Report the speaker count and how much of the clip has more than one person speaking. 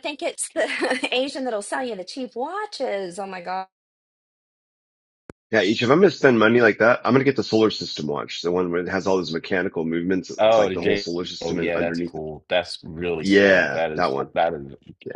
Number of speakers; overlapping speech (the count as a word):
three, about 16%